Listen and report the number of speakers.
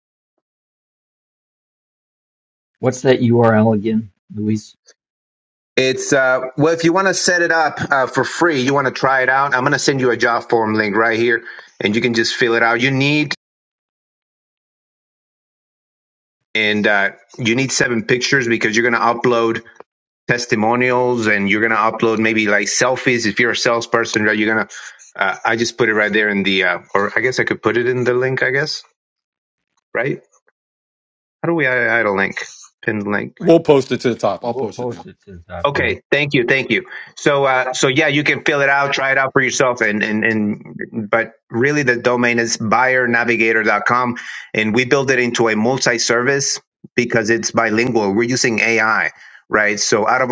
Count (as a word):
three